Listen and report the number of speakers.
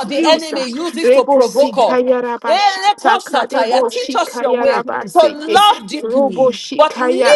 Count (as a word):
two